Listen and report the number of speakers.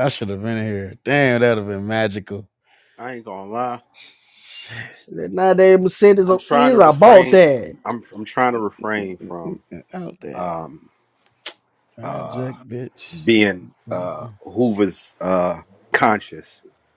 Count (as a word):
three